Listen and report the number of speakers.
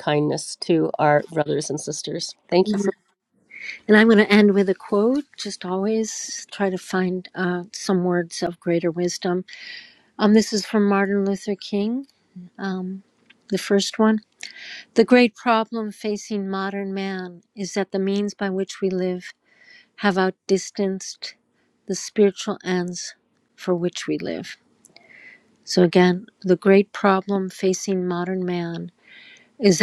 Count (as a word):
two